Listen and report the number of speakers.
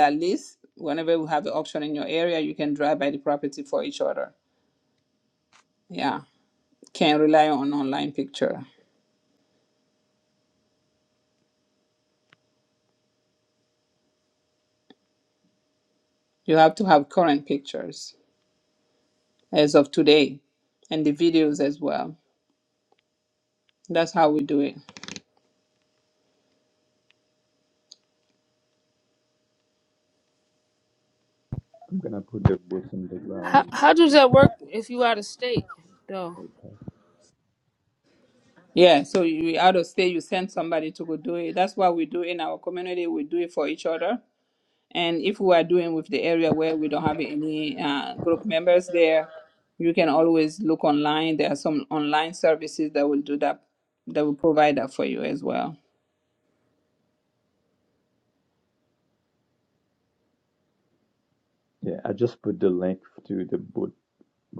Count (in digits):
3